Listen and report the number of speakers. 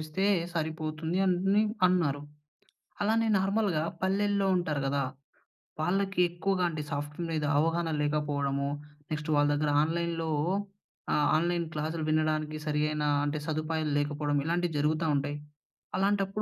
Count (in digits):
1